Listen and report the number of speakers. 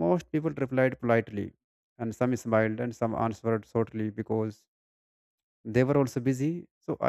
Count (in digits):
1